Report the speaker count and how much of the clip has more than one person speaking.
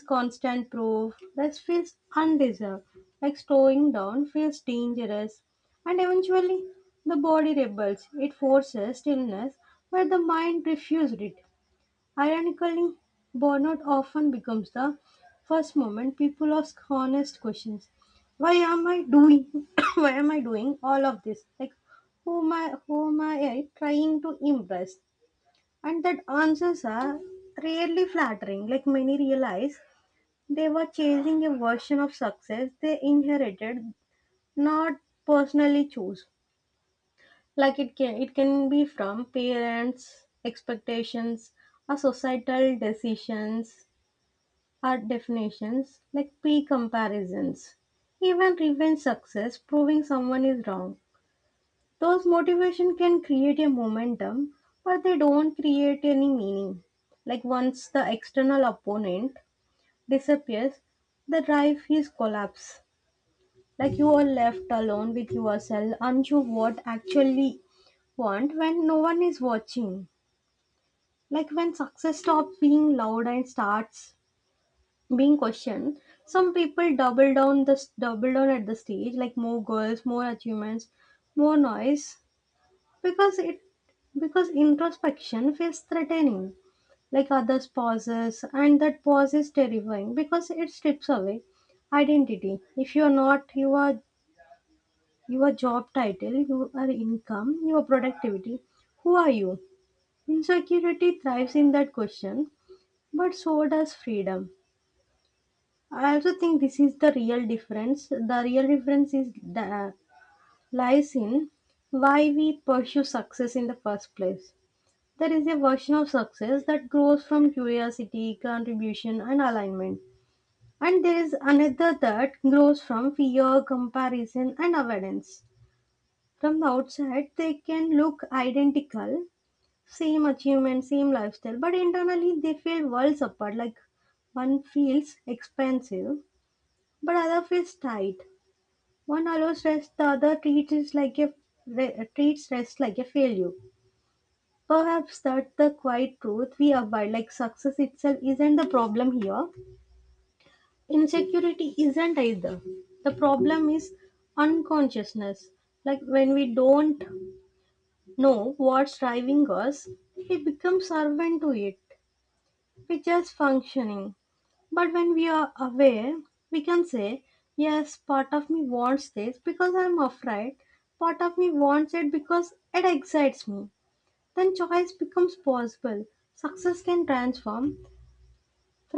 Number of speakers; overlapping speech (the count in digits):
1, no overlap